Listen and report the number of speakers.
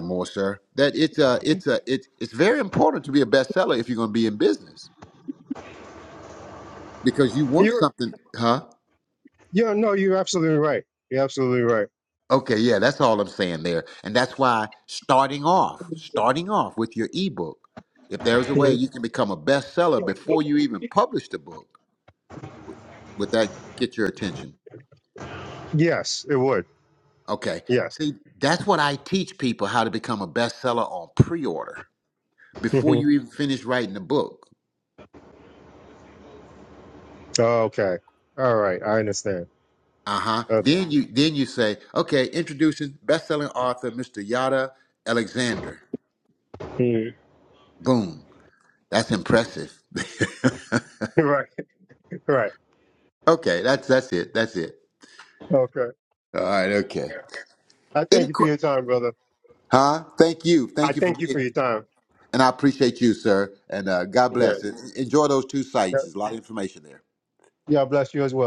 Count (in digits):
2